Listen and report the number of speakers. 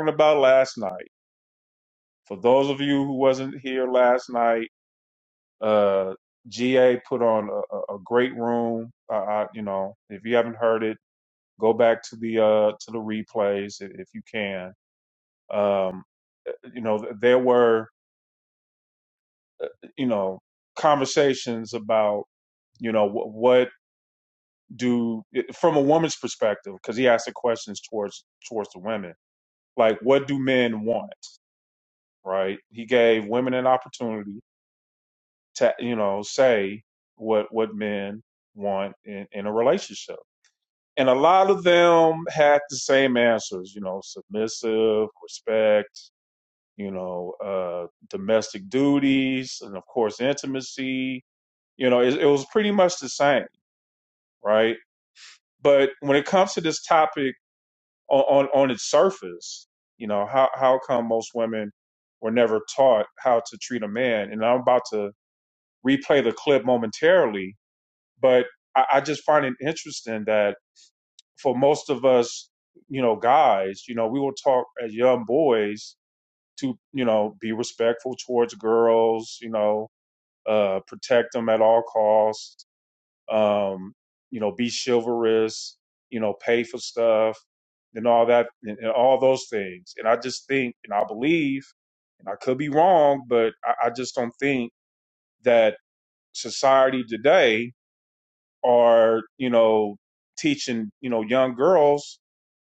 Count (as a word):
one